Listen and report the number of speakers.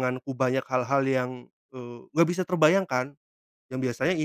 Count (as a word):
one